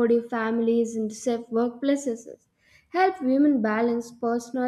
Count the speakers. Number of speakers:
one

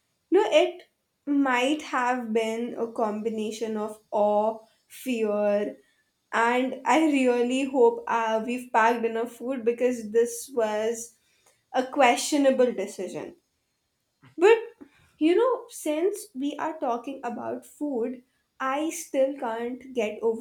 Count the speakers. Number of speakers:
one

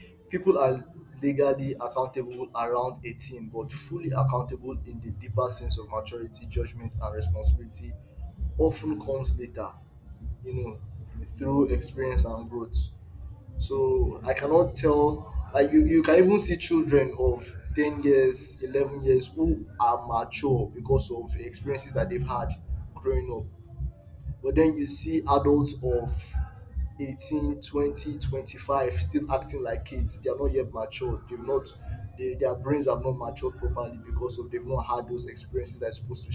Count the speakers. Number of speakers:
one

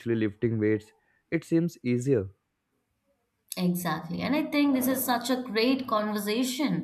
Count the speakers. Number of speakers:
two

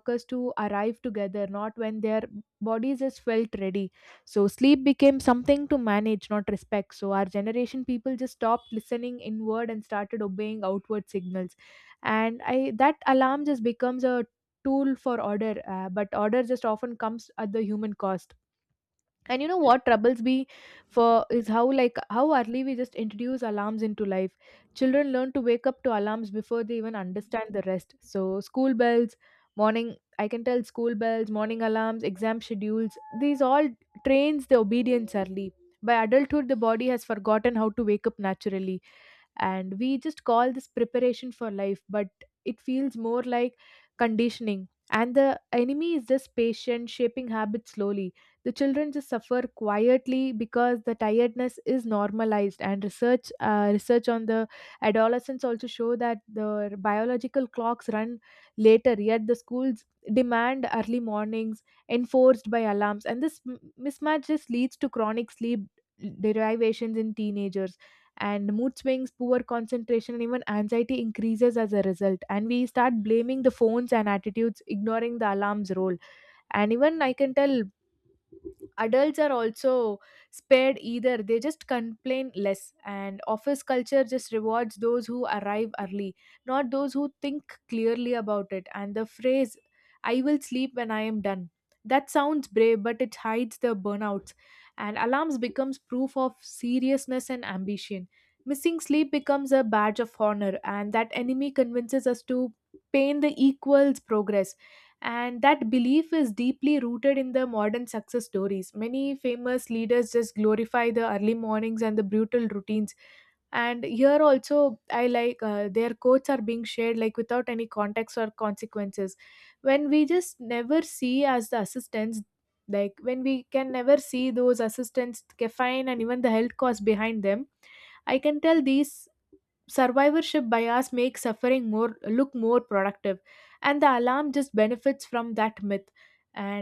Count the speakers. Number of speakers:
one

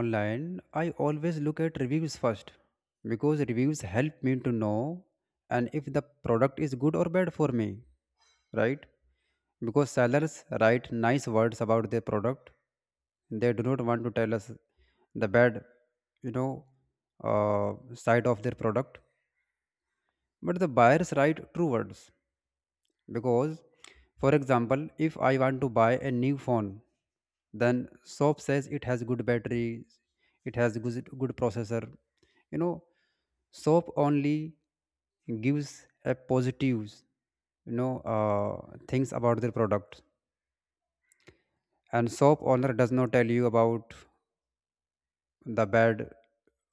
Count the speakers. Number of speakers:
one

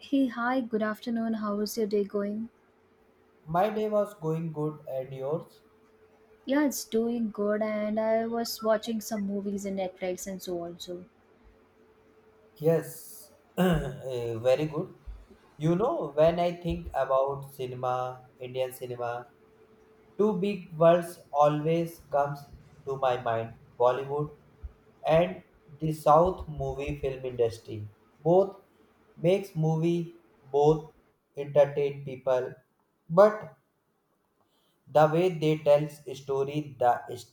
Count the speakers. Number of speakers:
two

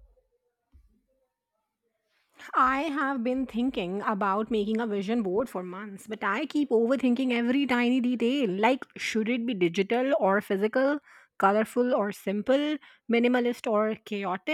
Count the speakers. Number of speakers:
one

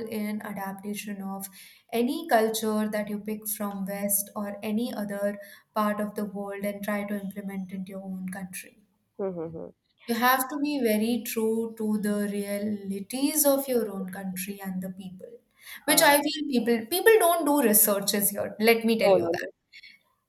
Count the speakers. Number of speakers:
two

